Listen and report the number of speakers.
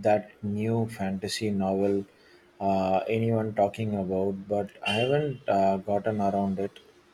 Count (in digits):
1